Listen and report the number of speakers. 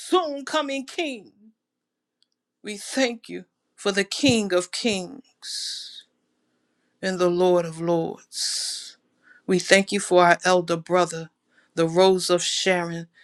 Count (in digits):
1